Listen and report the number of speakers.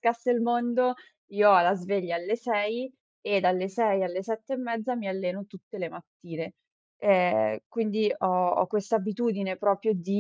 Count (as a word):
one